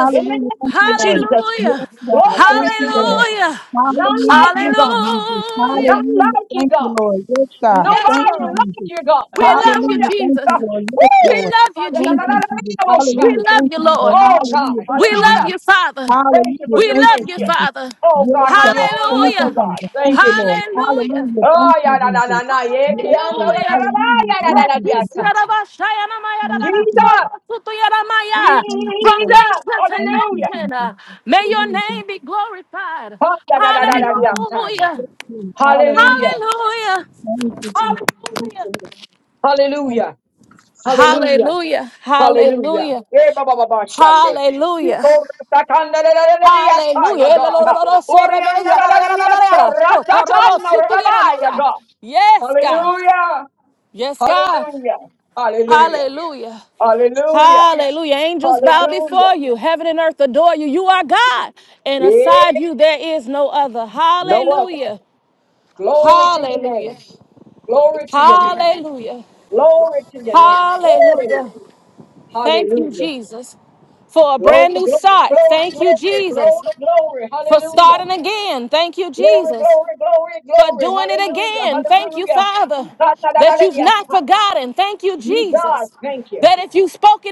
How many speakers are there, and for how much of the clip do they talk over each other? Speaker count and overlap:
3, about 50%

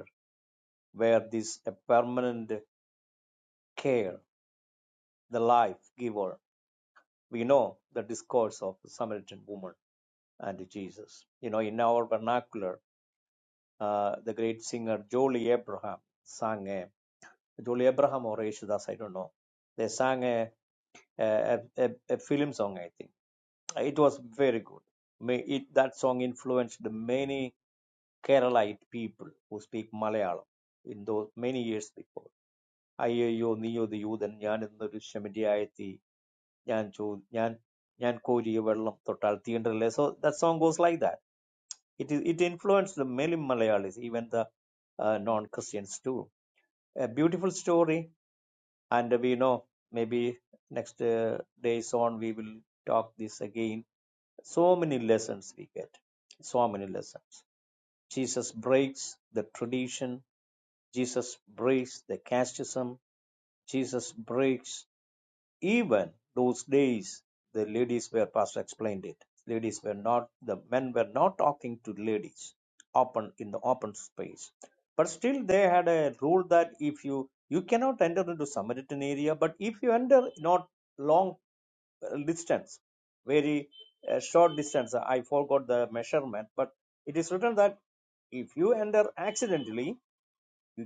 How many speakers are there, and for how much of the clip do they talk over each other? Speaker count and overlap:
1, no overlap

